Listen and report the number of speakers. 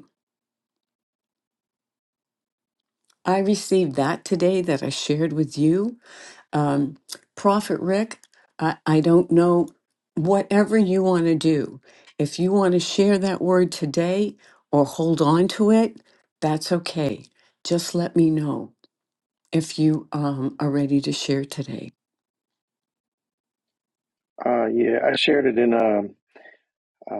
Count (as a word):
two